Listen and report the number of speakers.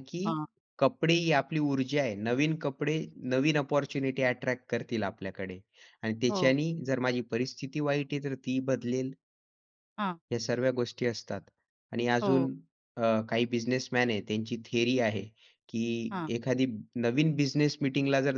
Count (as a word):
two